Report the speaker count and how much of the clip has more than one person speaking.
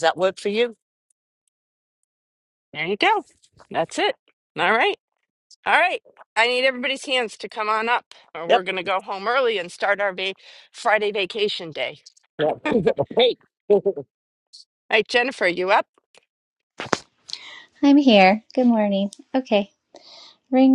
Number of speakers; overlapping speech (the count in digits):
3, no overlap